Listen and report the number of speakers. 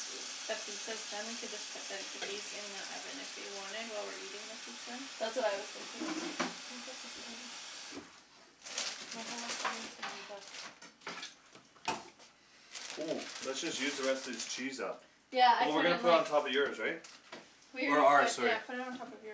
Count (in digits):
3